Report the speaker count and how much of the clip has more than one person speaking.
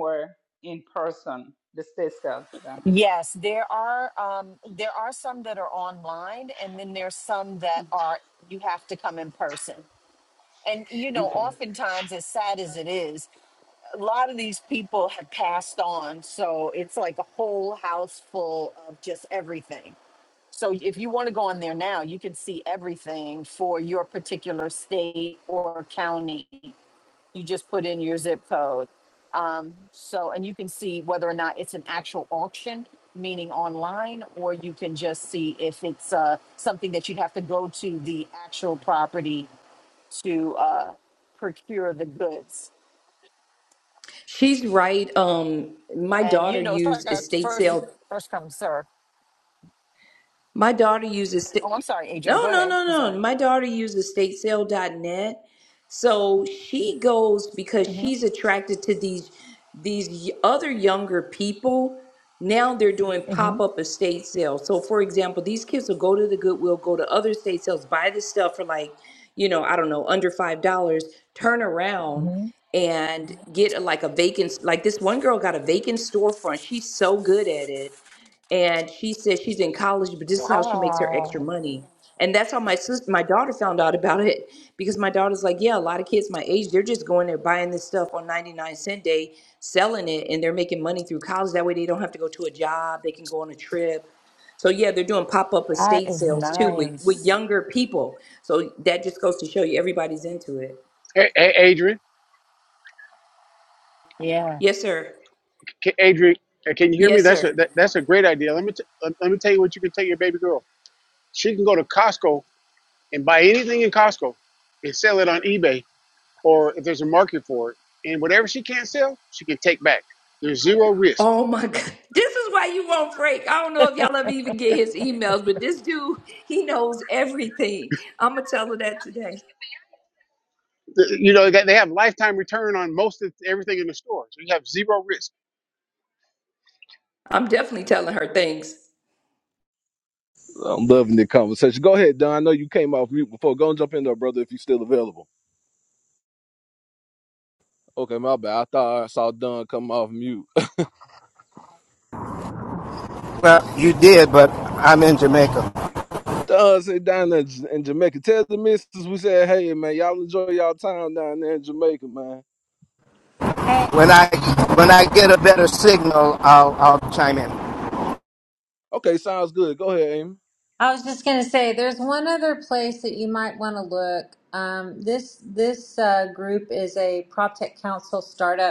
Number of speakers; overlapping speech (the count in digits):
7, about 4%